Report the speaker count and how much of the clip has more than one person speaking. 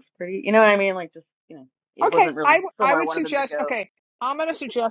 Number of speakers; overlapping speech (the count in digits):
2, about 35%